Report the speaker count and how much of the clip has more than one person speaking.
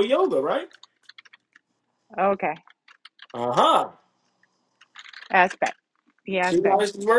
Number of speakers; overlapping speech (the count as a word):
two, about 4%